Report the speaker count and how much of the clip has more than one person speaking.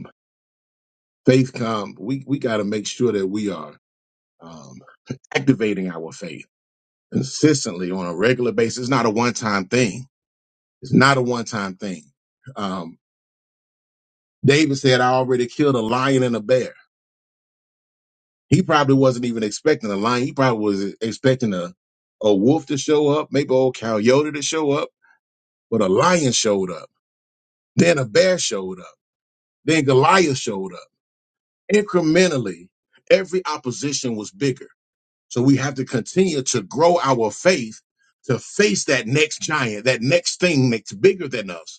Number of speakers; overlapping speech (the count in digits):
1, no overlap